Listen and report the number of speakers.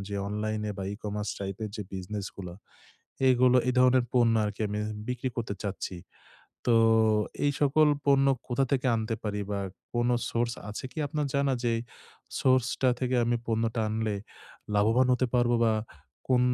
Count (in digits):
1